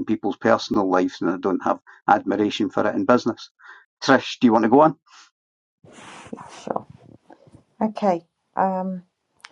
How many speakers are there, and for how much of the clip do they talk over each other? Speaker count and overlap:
2, no overlap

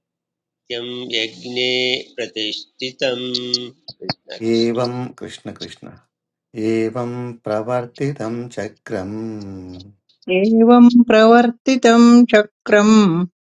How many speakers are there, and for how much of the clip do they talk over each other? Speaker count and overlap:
3, about 2%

